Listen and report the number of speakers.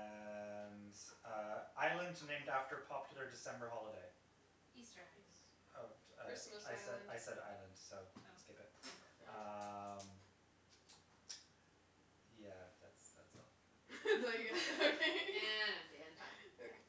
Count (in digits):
4